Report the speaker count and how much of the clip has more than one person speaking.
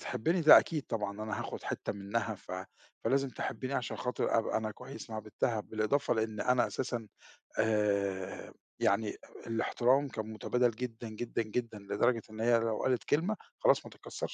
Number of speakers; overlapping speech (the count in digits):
1, no overlap